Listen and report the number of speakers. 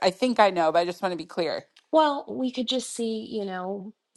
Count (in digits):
2